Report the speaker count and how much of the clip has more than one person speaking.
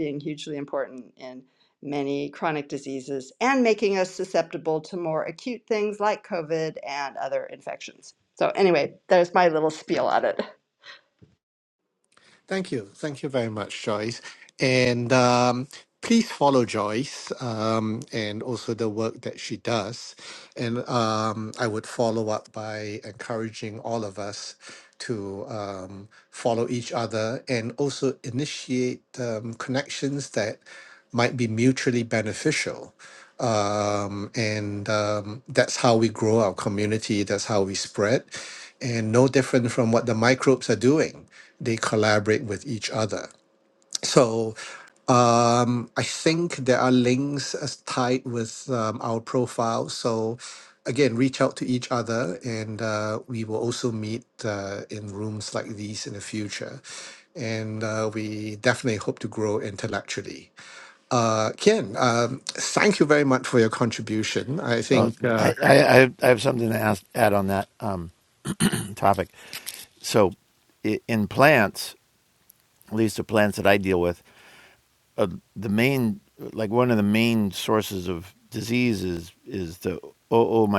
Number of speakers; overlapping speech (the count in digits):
3, about 1%